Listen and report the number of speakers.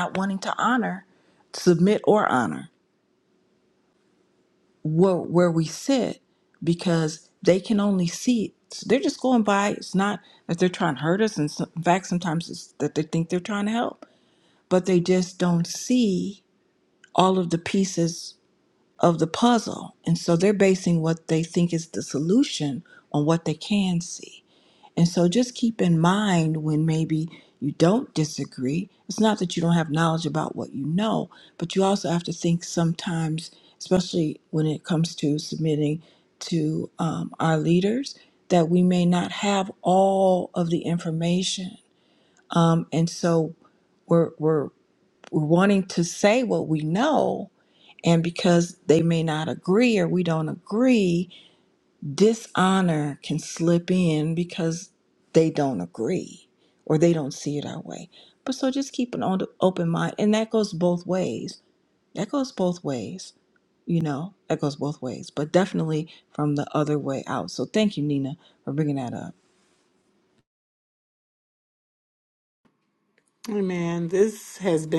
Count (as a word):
two